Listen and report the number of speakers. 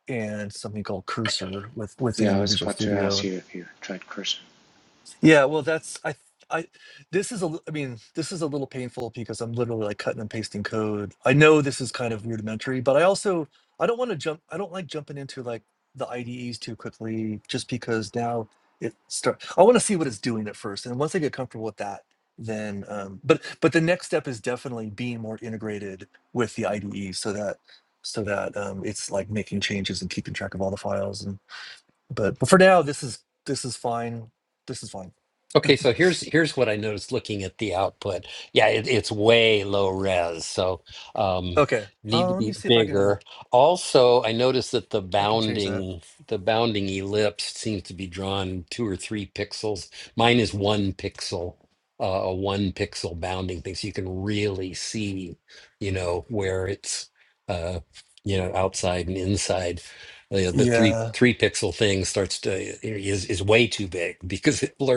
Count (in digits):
3